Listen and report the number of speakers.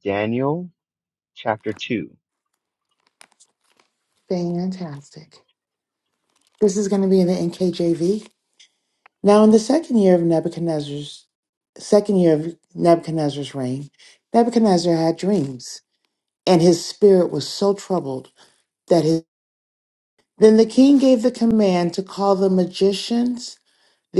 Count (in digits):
2